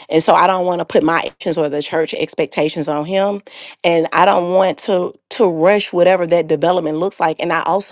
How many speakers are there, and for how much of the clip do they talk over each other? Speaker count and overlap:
1, no overlap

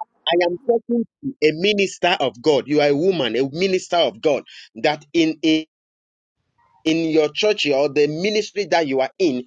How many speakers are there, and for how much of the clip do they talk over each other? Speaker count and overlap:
1, no overlap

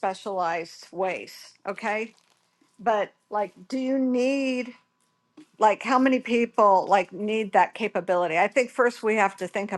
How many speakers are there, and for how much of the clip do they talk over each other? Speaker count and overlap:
1, no overlap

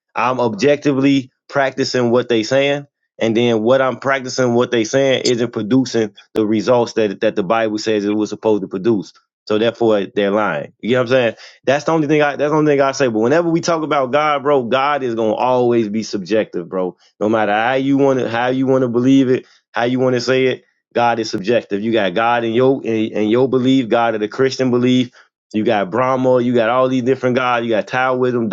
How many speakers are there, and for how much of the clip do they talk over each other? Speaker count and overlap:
1, no overlap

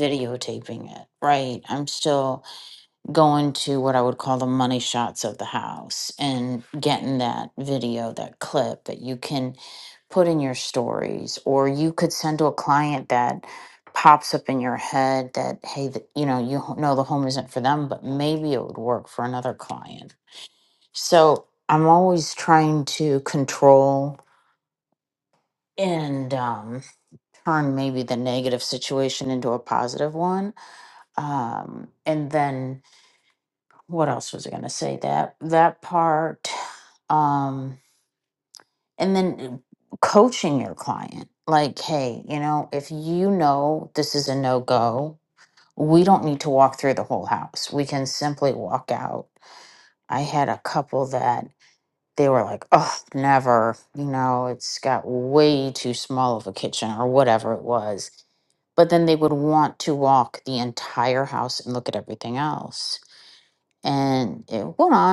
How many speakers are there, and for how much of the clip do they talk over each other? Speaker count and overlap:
1, no overlap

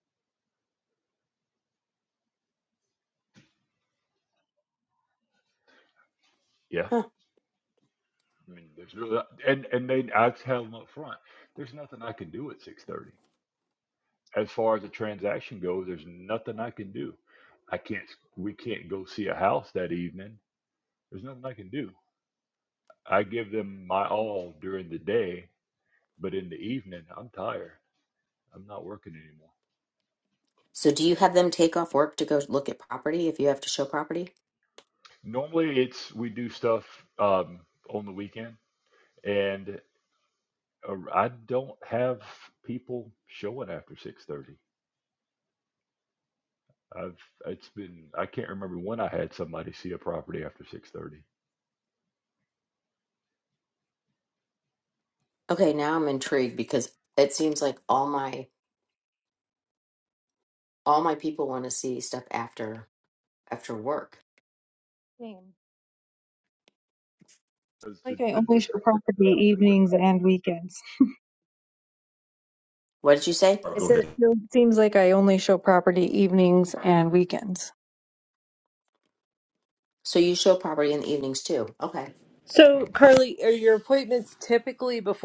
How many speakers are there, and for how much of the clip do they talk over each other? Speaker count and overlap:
4, about 2%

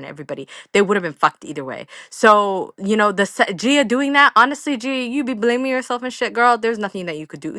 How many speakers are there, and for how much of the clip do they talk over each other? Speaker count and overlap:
1, no overlap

